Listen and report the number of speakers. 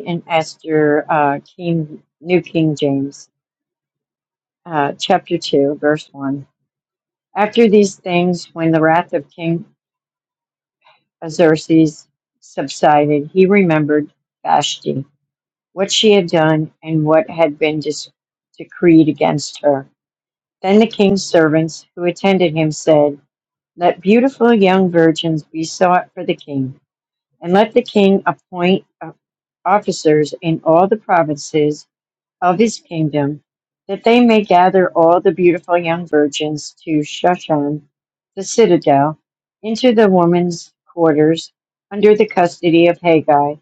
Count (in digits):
1